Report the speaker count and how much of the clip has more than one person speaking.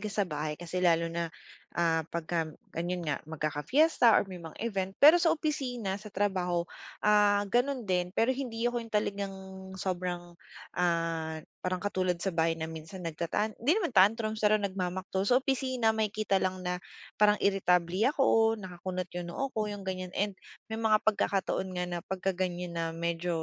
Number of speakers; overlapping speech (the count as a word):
one, no overlap